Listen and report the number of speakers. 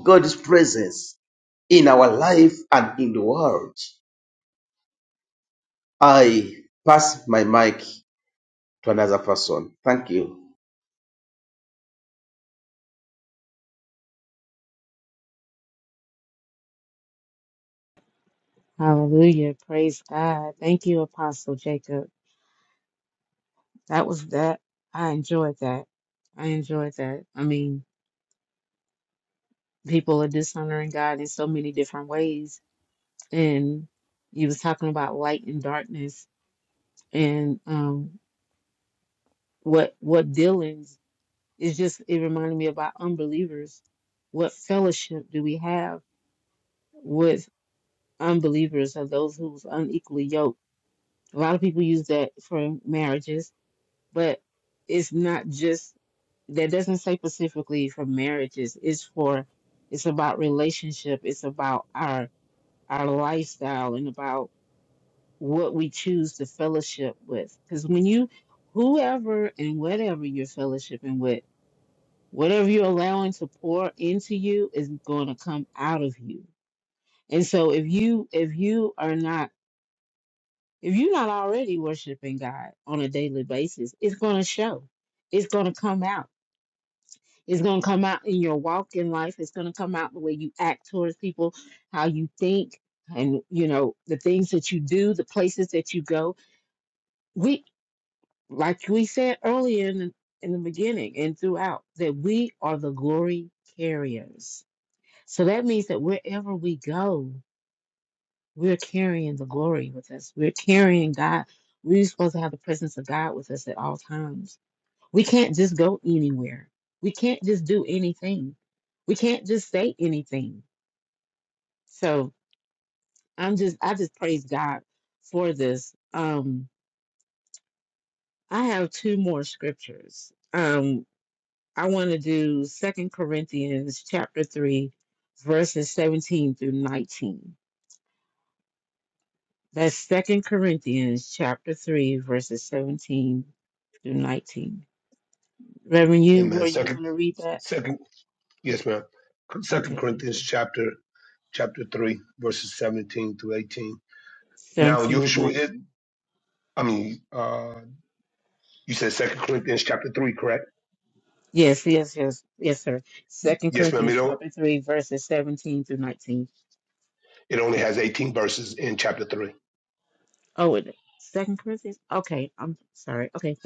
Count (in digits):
3